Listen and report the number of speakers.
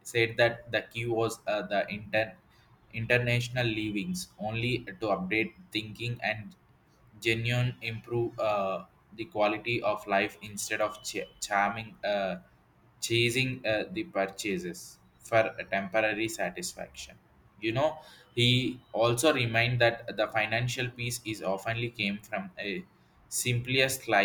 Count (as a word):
one